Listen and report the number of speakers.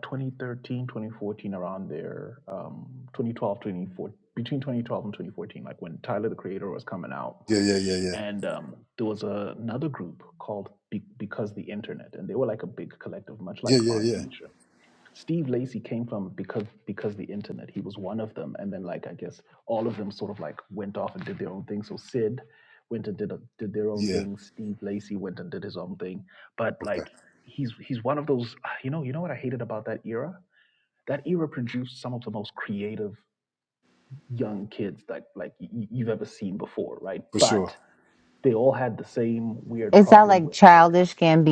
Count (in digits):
3